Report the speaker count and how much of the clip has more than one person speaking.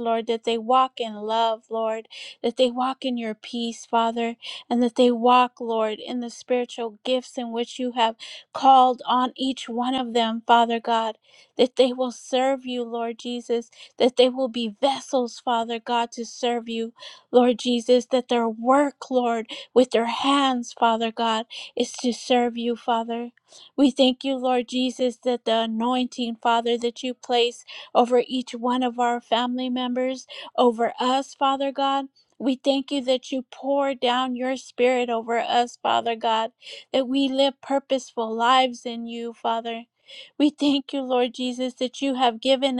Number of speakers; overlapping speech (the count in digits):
1, no overlap